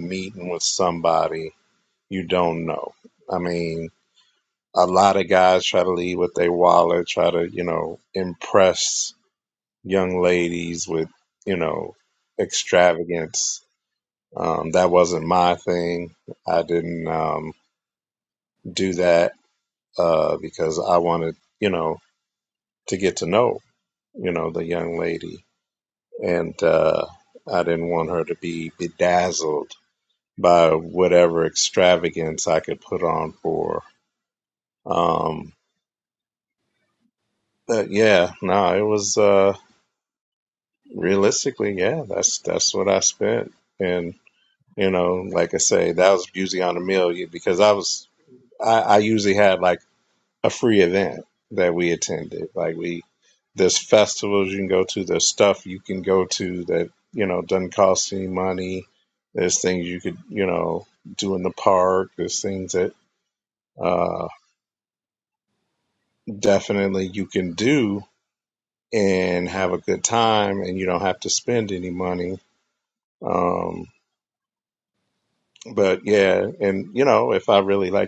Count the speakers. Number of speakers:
1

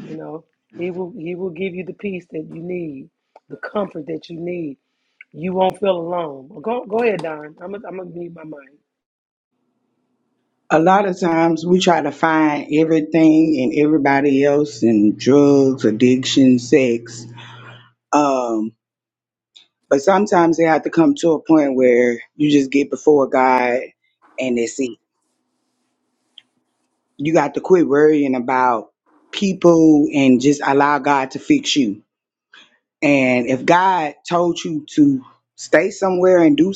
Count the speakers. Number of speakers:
2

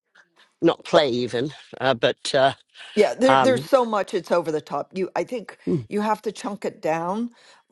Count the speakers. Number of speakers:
2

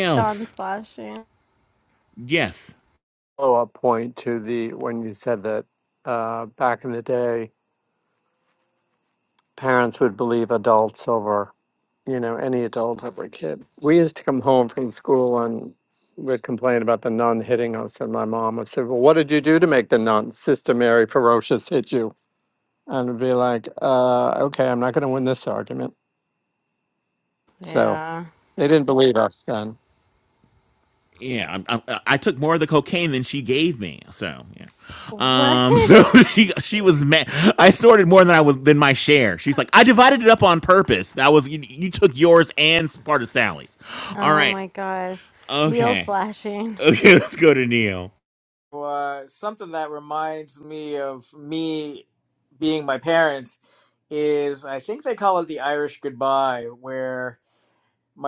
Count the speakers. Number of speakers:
4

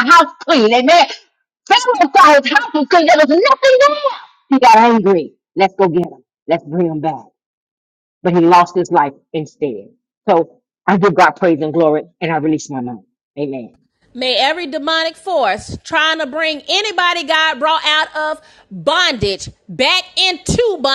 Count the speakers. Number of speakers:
2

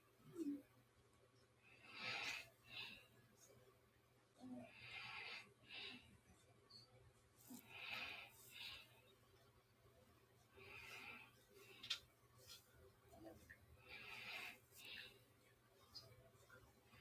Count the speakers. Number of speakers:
0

